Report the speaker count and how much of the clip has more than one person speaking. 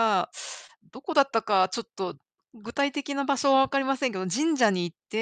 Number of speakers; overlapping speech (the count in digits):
1, no overlap